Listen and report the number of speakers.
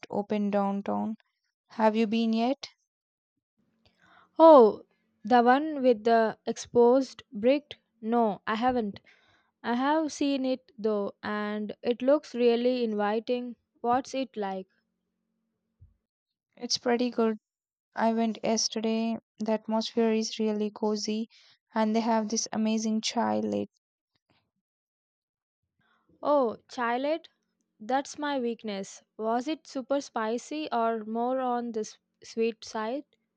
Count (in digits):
2